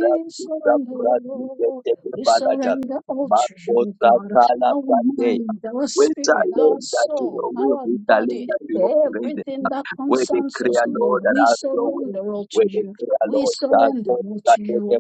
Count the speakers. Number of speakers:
2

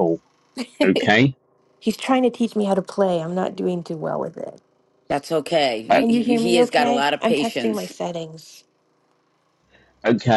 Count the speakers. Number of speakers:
3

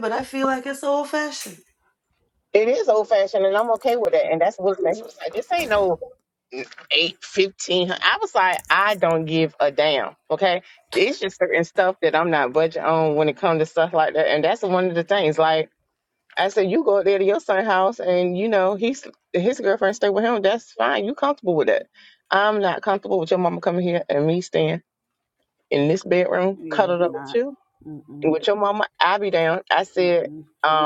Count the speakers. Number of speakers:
3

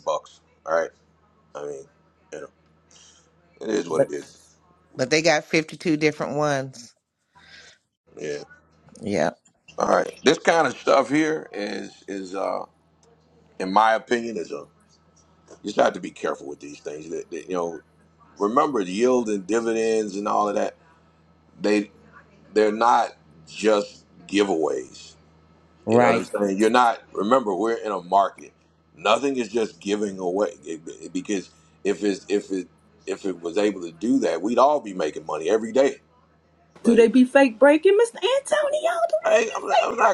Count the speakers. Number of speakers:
3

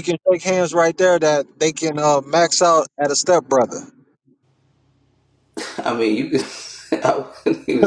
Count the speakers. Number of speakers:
2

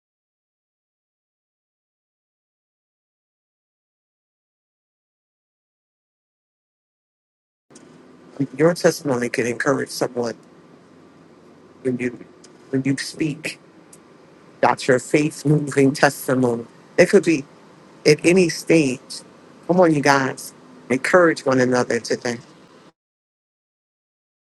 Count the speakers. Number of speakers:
1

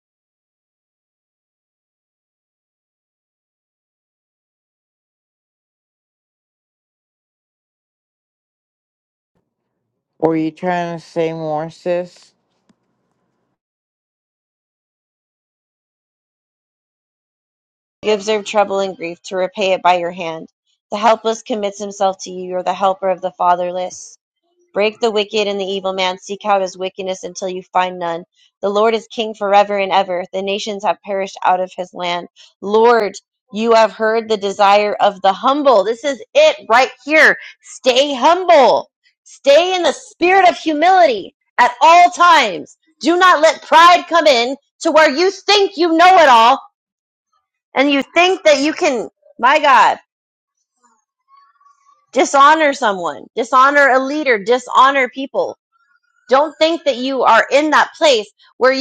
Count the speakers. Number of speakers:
2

